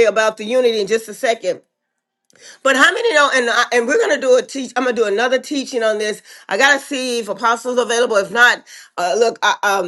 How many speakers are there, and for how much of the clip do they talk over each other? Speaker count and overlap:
one, no overlap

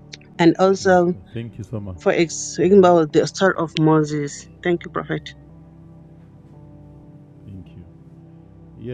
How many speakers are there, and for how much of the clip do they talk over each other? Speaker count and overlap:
two, about 16%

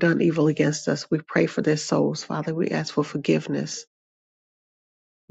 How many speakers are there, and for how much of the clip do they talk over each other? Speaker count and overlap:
one, no overlap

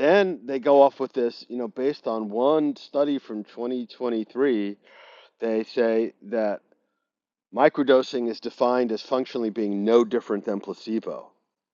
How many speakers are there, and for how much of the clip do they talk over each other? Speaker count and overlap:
one, no overlap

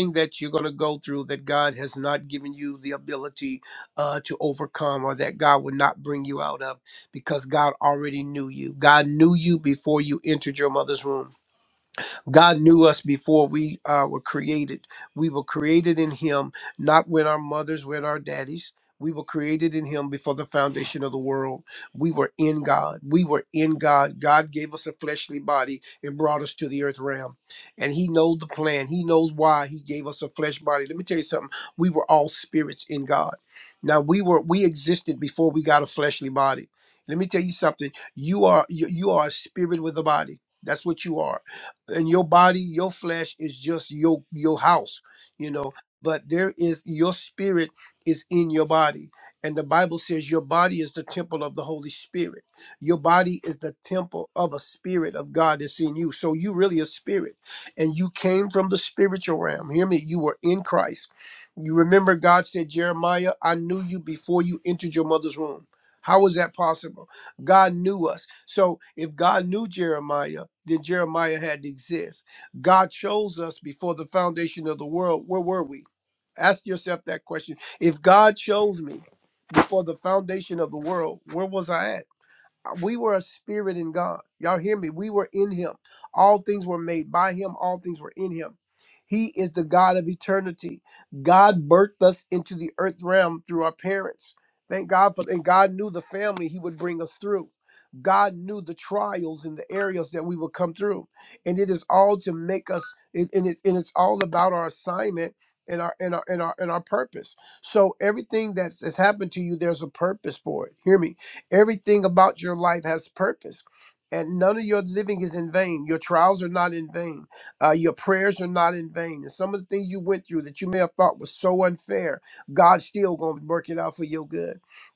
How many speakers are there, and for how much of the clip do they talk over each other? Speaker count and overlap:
one, no overlap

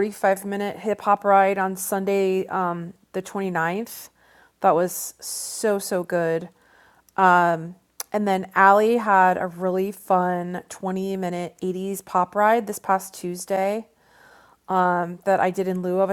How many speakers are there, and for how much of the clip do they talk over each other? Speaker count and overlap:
one, no overlap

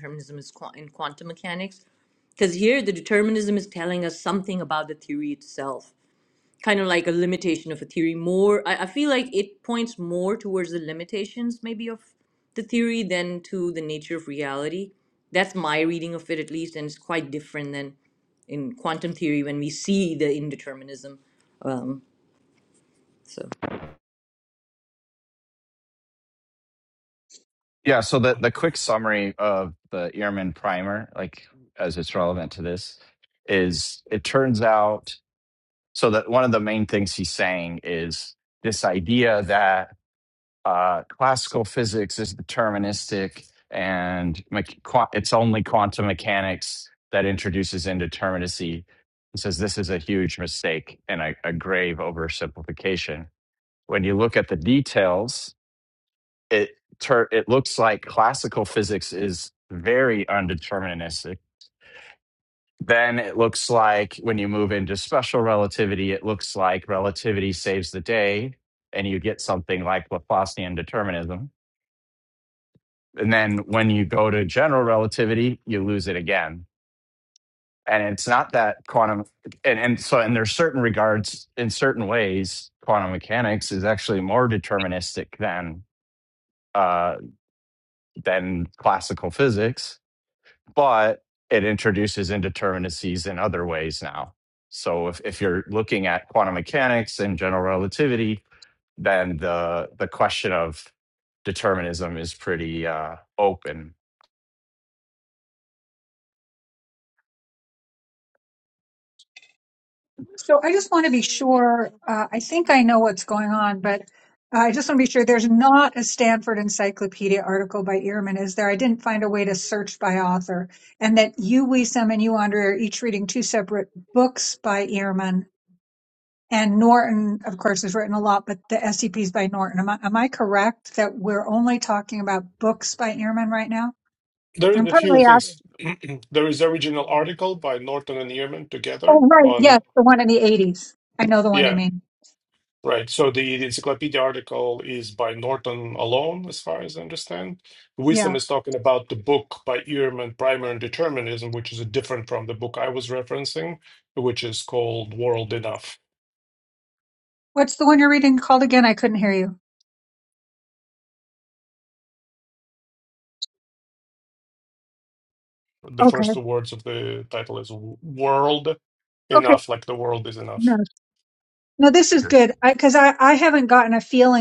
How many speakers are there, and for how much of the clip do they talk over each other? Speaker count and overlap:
four, about 1%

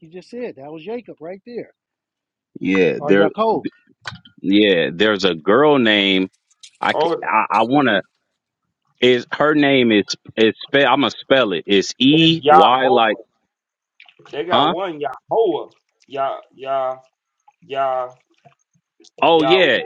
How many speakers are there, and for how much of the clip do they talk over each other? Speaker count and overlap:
three, about 12%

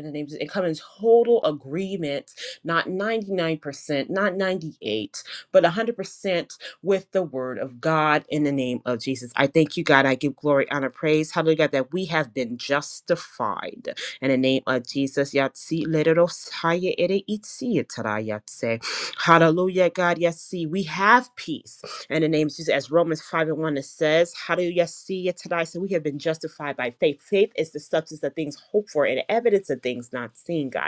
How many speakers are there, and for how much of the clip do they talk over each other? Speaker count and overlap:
one, no overlap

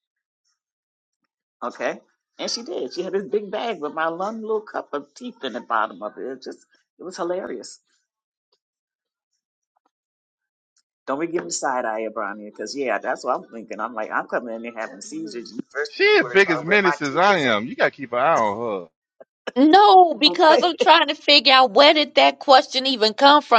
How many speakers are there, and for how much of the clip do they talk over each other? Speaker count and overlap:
three, about 9%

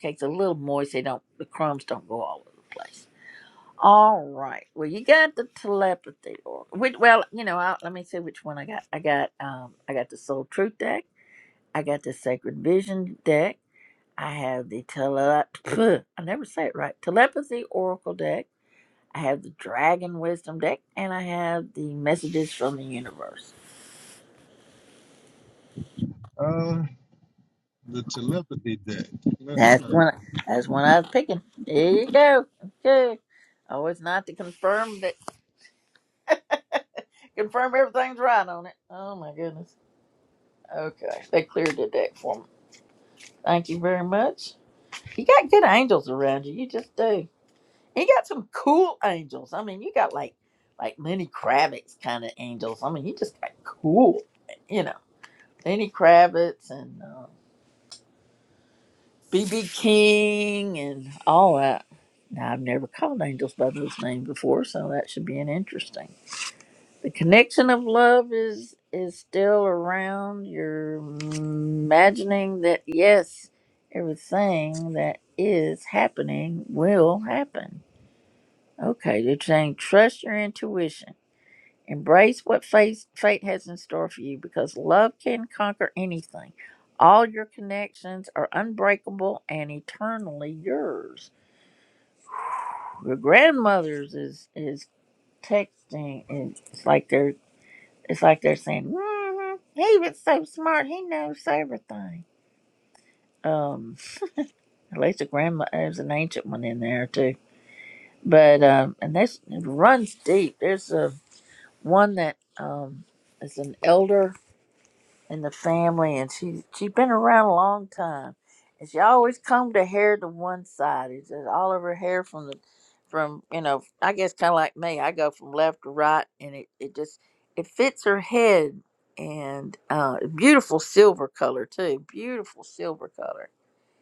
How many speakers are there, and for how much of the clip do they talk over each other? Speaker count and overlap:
two, under 1%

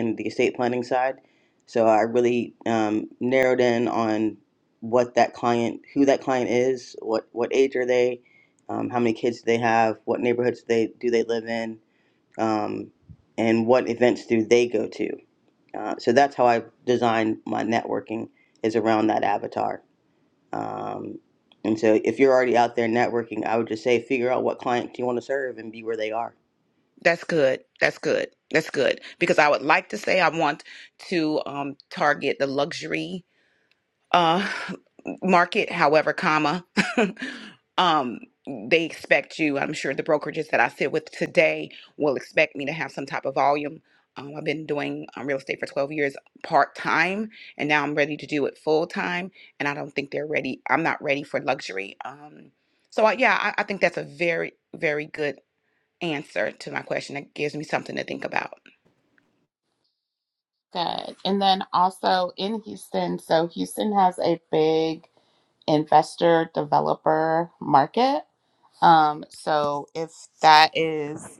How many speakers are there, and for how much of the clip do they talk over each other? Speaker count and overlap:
three, no overlap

